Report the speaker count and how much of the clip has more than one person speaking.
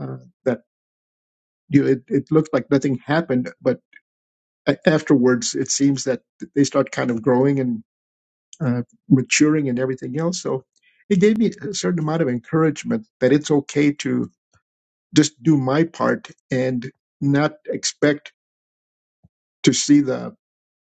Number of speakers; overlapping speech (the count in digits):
1, no overlap